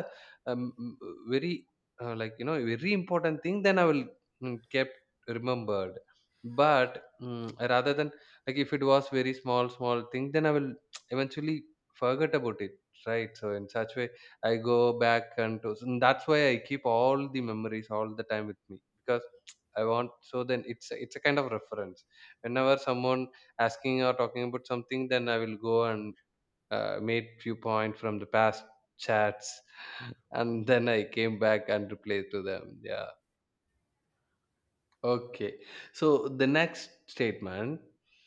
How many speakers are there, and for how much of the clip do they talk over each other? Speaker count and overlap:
1, no overlap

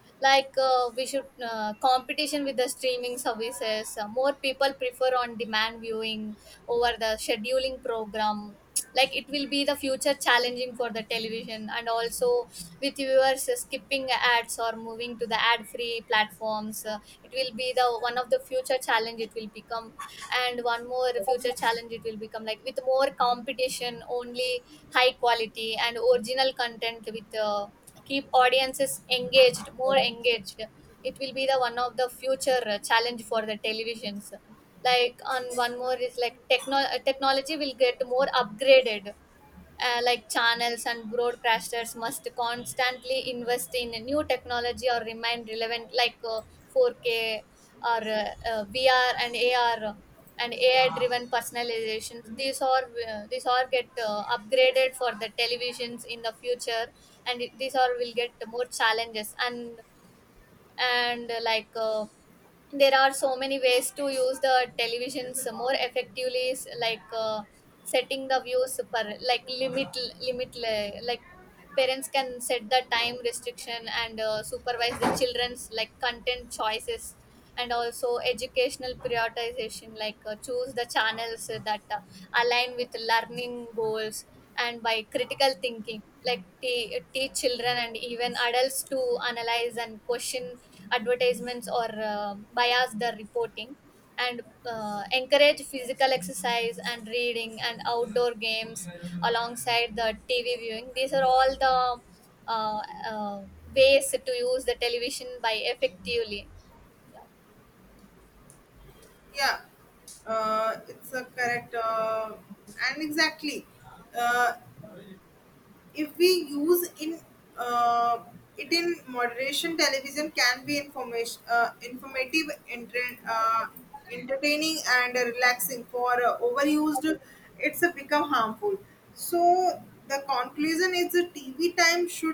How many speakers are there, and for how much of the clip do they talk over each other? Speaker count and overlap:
2, no overlap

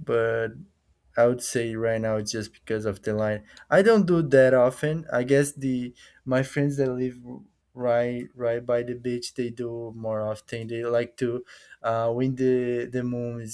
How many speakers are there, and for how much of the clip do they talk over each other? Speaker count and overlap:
1, no overlap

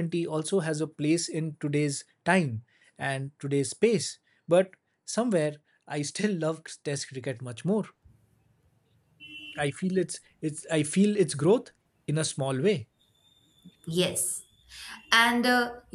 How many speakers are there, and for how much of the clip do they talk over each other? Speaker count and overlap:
2, no overlap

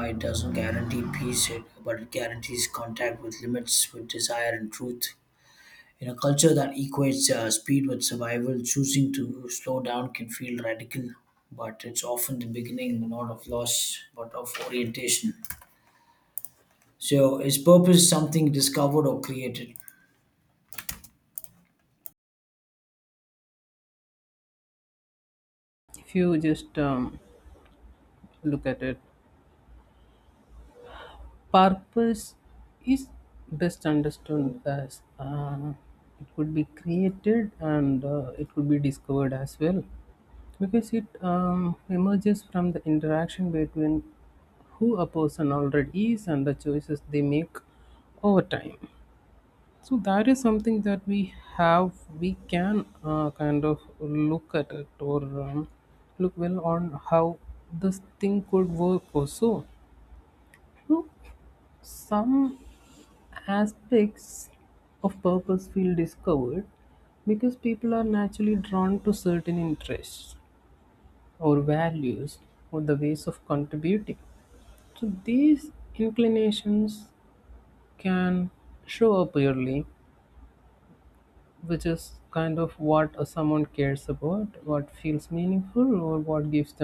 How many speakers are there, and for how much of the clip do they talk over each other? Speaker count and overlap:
2, no overlap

